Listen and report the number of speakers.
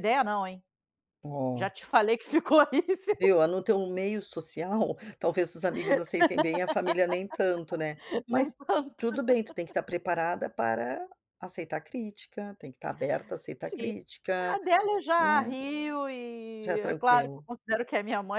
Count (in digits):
2